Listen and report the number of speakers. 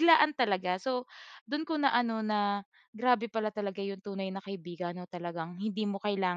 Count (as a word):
one